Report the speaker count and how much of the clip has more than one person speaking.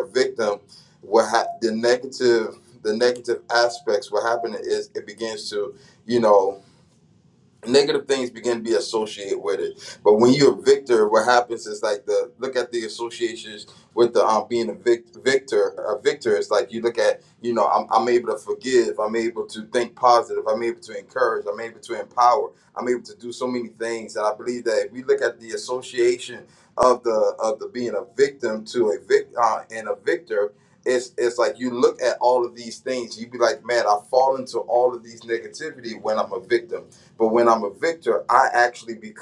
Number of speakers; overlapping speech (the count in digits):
1, no overlap